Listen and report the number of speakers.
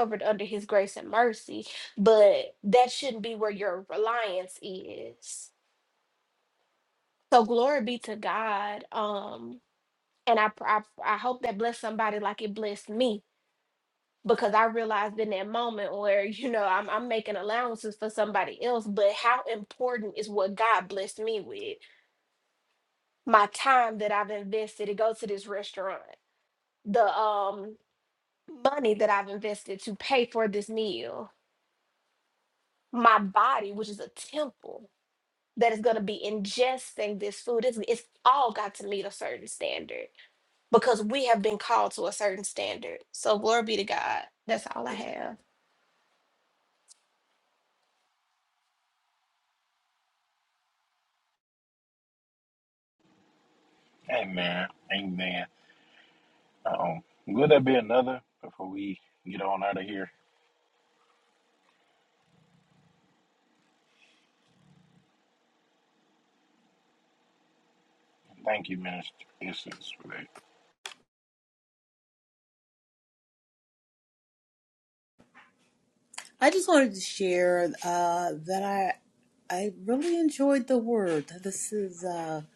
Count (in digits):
3